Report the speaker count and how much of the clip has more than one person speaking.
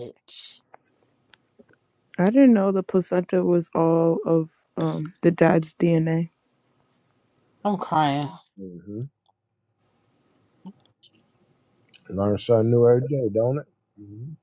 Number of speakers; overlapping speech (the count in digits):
3, no overlap